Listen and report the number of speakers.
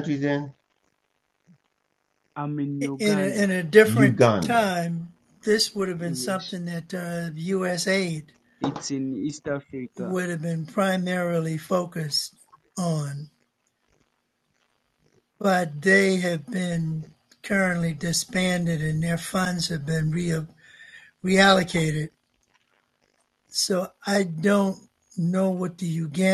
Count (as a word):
three